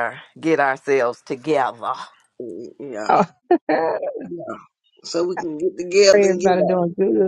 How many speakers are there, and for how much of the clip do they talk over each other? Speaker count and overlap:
3, about 11%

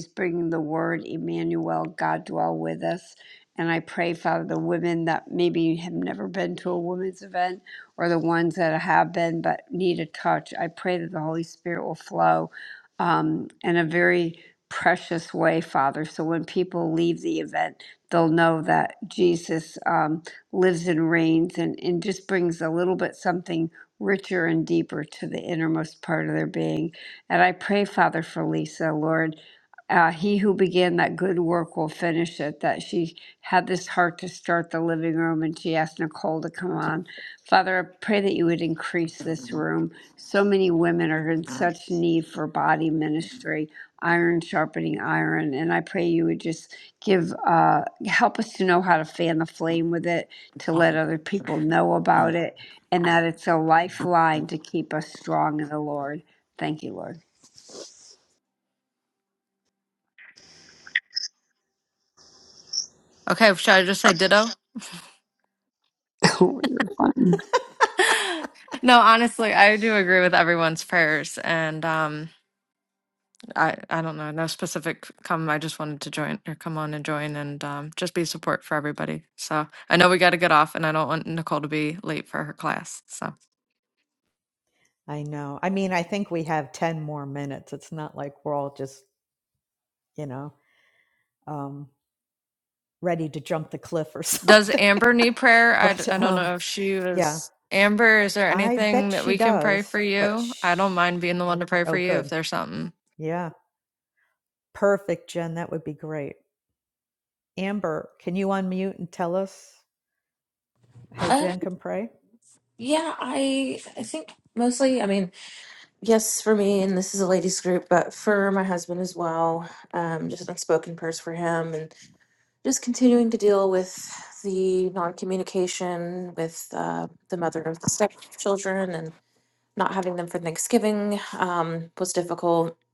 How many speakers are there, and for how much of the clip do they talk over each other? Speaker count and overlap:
4, about 3%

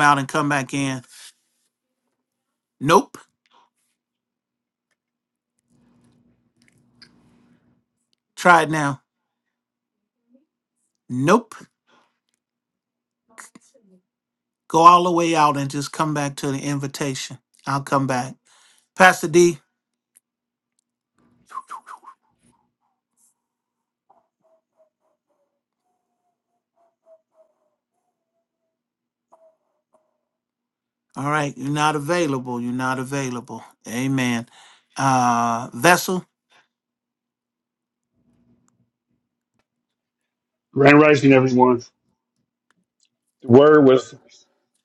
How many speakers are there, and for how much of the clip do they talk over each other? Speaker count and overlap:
2, no overlap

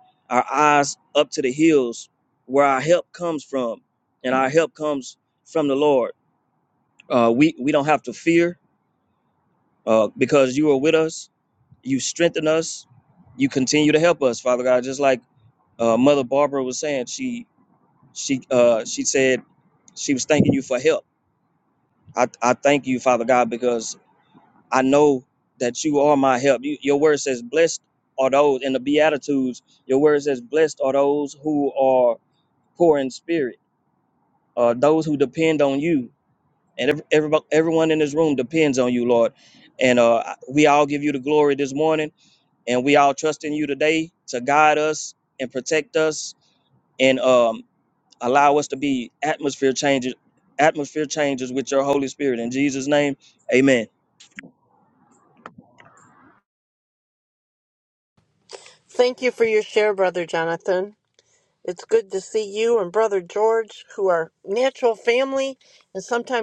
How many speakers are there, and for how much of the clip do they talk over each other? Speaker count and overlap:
2, no overlap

